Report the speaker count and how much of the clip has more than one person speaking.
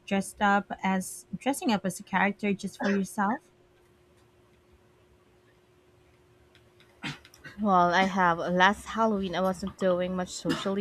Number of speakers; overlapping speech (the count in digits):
2, no overlap